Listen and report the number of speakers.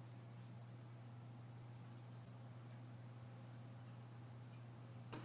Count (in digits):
0